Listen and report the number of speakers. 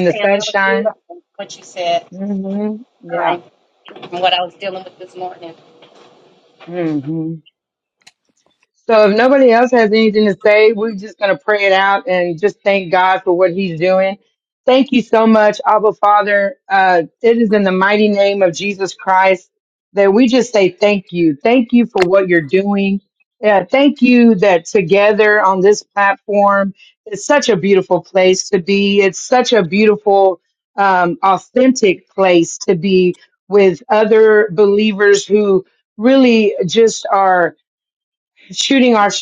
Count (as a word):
two